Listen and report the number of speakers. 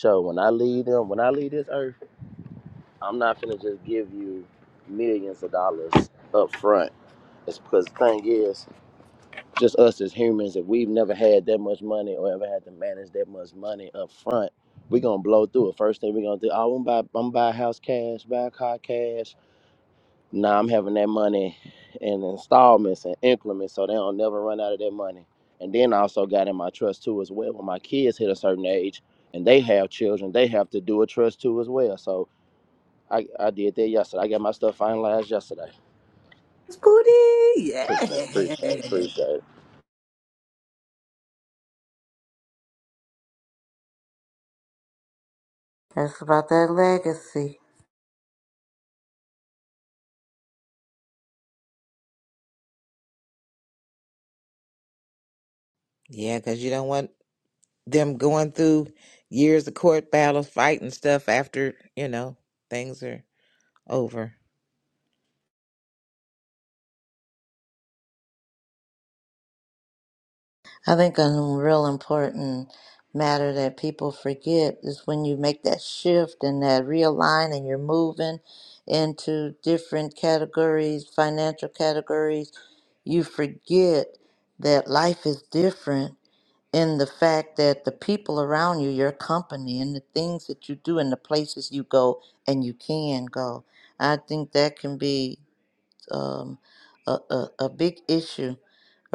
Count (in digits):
4